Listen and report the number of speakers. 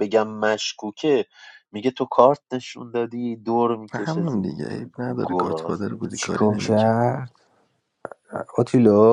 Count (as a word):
three